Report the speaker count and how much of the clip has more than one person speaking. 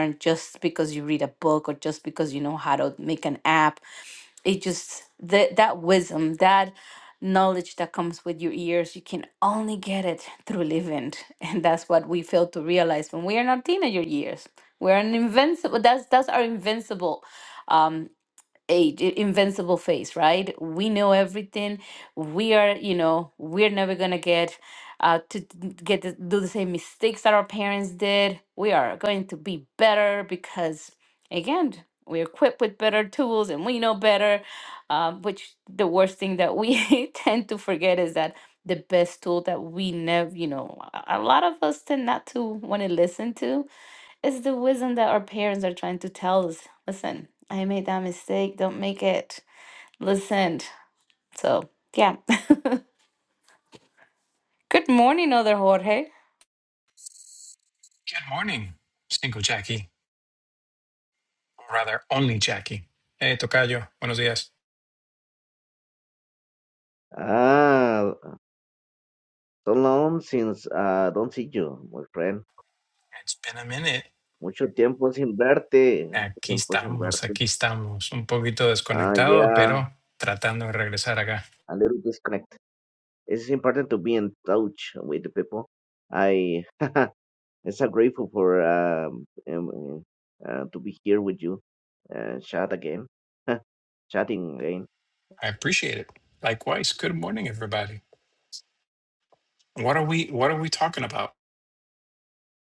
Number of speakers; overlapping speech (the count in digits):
3, about 2%